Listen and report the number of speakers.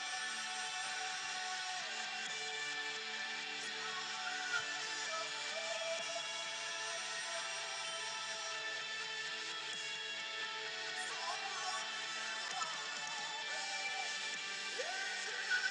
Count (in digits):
0